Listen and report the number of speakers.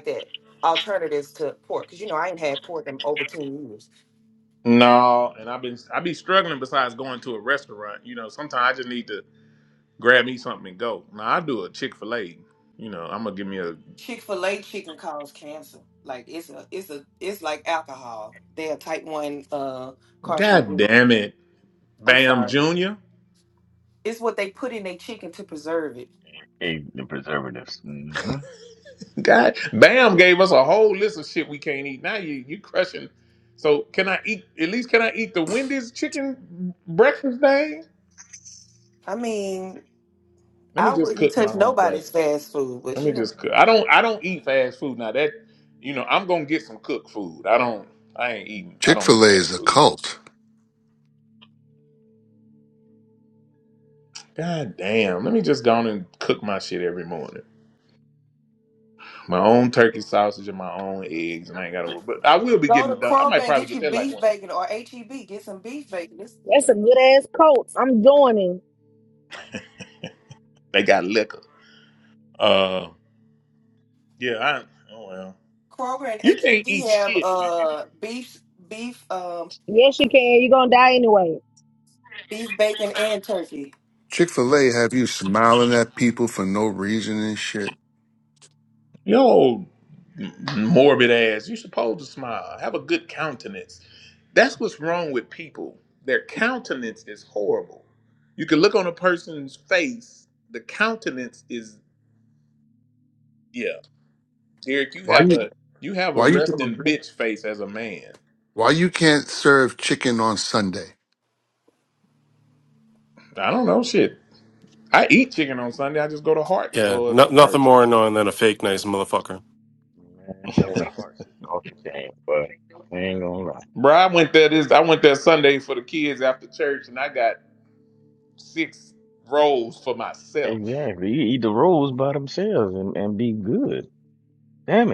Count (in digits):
6